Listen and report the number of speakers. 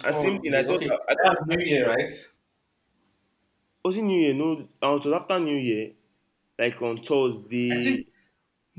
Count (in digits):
2